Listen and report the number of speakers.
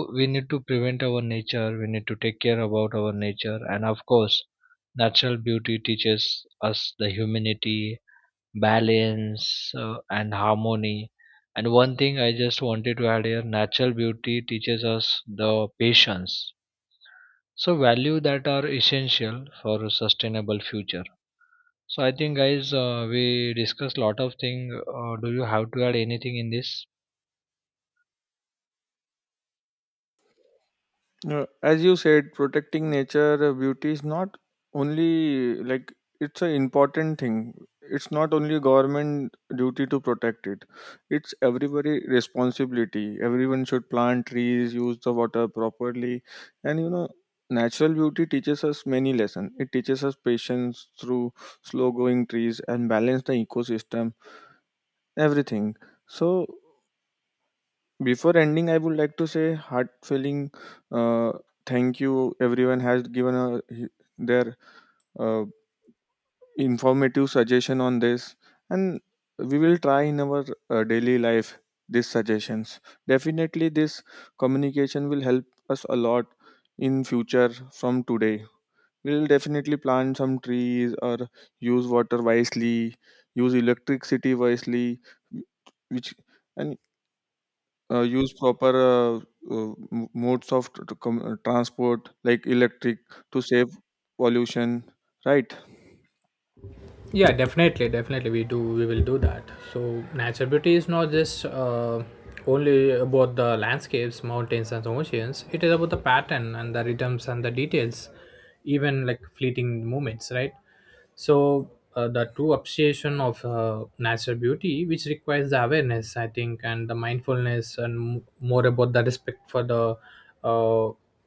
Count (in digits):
3